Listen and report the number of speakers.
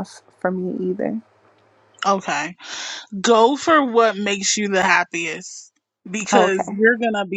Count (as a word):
two